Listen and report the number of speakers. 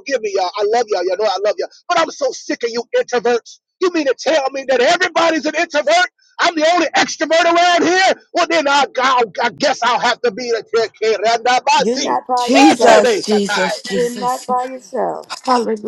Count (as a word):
three